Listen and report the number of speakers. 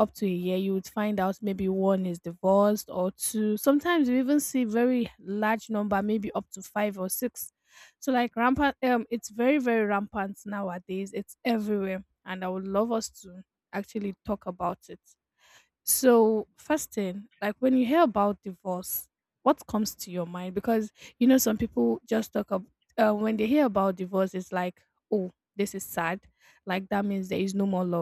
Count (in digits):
1